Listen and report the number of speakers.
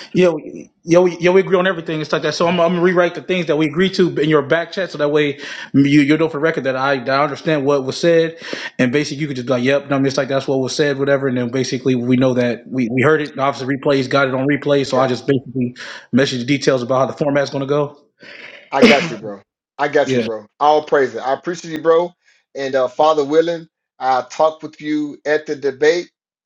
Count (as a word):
two